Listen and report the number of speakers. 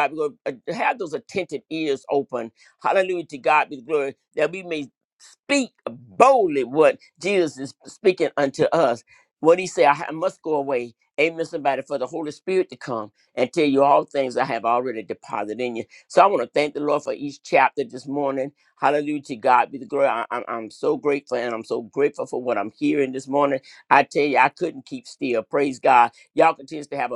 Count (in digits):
1